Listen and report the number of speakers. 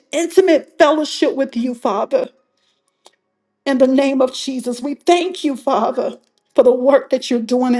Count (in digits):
1